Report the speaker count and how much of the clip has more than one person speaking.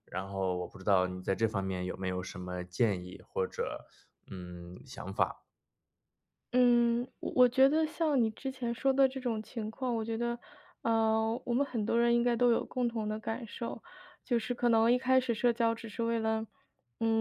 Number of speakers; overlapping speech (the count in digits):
2, no overlap